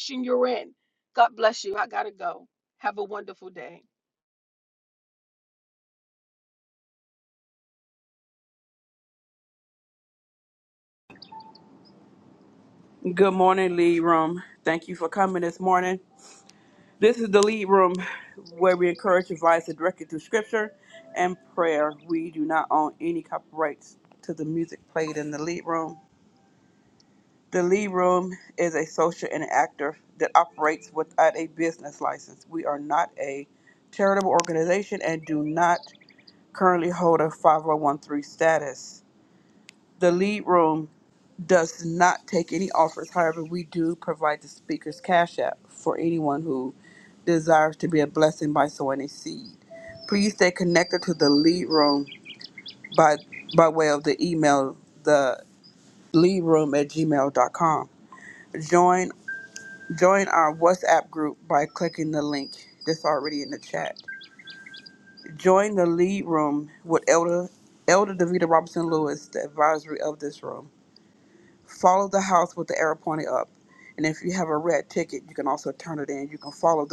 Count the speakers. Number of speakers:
2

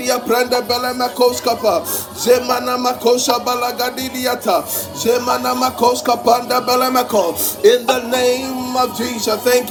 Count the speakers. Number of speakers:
1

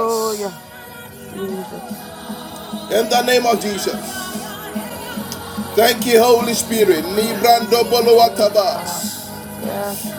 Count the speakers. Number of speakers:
2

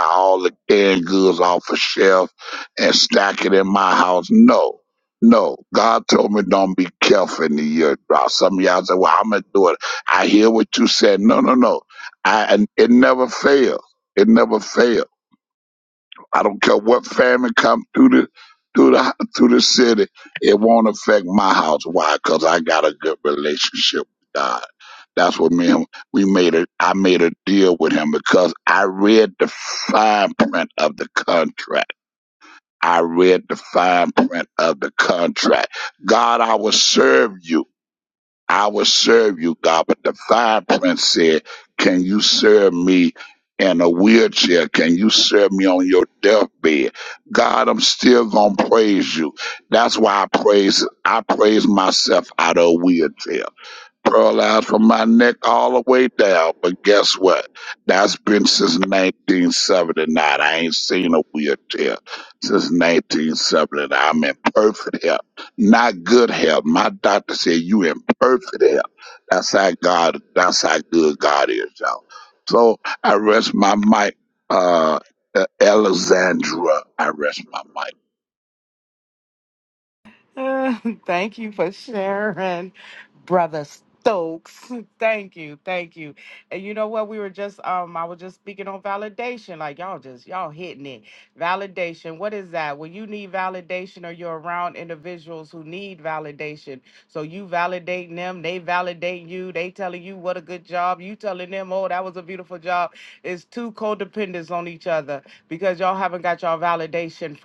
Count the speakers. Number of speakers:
2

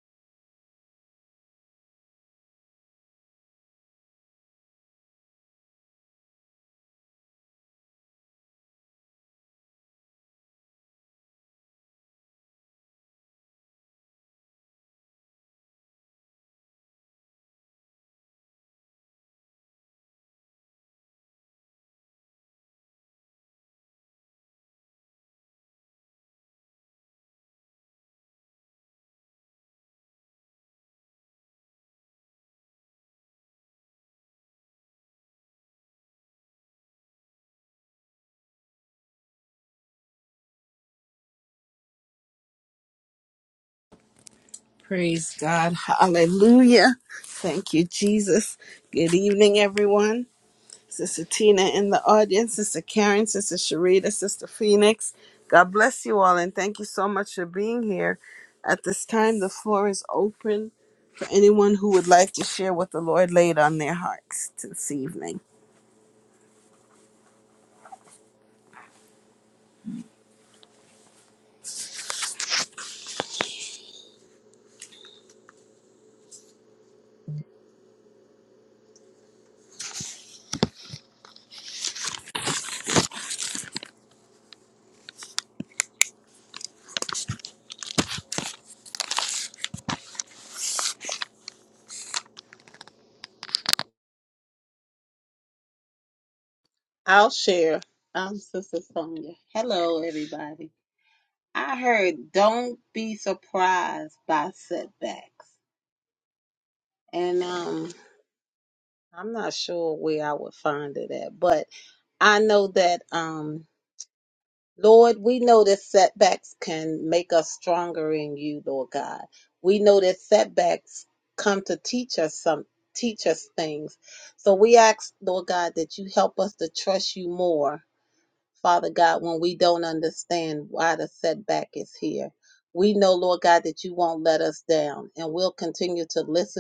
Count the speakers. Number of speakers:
2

